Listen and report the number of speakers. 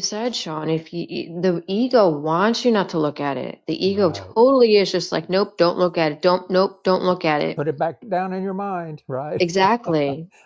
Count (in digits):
2